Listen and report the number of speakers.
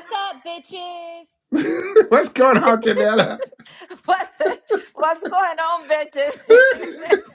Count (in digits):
3